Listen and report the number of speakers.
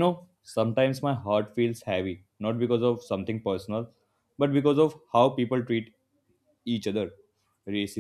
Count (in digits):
1